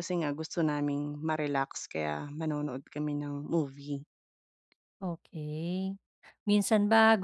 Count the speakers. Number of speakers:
2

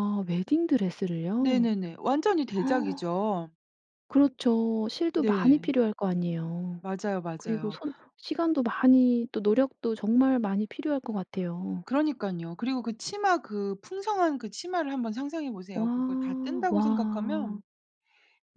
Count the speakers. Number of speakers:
2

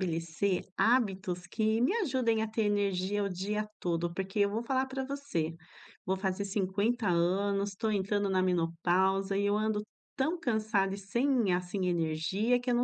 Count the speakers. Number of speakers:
1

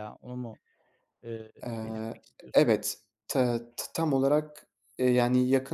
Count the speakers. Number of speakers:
2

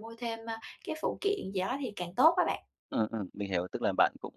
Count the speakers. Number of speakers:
2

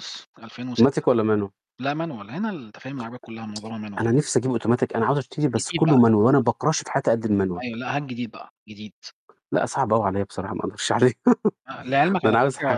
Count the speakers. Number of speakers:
2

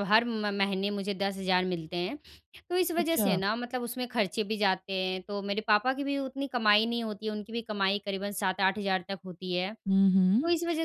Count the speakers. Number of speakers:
2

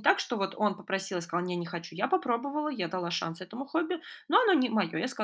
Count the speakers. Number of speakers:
1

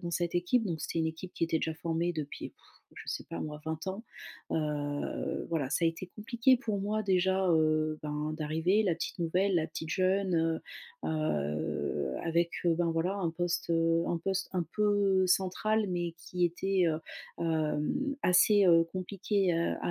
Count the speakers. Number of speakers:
1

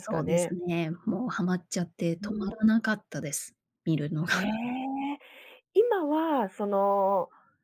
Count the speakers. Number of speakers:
2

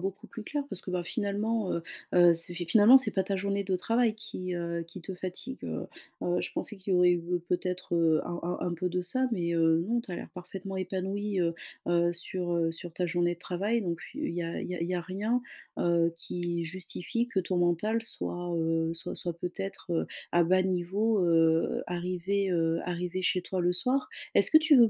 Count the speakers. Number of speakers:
1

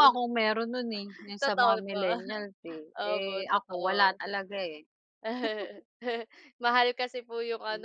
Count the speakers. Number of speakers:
2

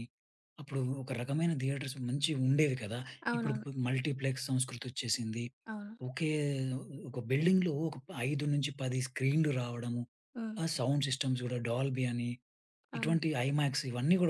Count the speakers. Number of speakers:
2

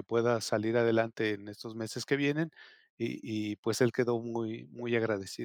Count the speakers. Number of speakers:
1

